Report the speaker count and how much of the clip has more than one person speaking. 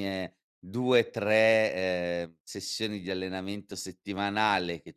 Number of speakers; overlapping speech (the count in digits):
1, no overlap